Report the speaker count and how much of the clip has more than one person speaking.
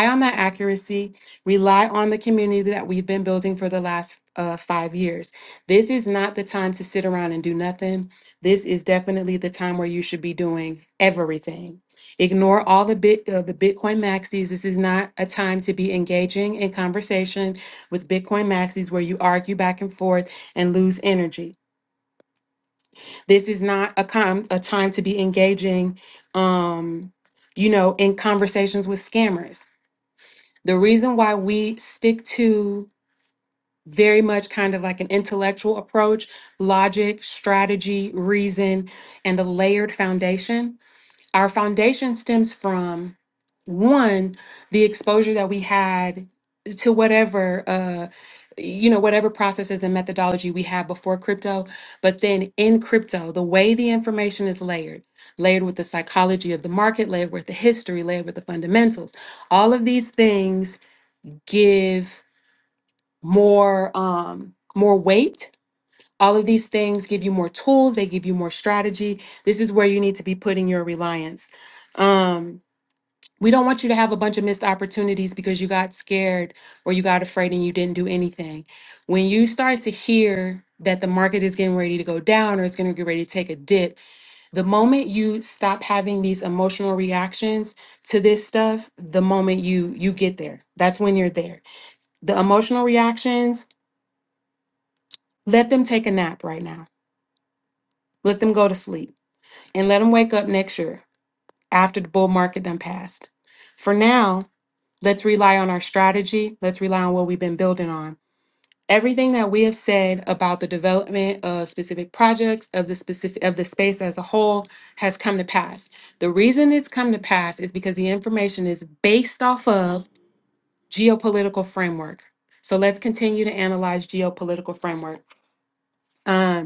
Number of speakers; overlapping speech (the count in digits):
1, no overlap